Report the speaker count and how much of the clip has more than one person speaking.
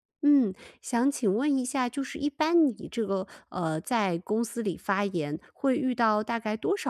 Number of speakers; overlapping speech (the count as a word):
one, no overlap